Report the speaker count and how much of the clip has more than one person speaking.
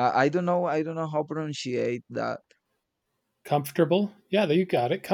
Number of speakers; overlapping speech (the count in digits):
2, no overlap